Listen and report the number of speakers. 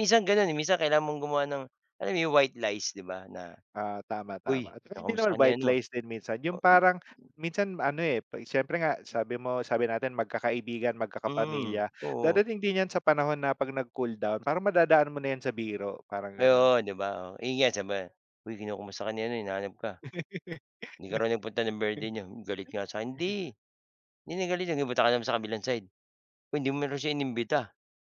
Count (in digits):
2